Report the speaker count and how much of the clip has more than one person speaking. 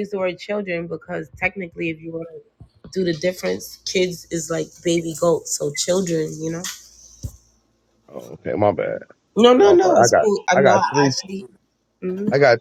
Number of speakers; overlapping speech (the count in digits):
2, about 12%